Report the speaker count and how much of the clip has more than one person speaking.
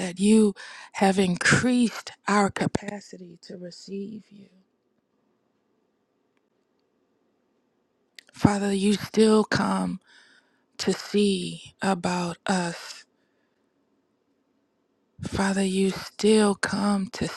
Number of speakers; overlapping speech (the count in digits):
1, no overlap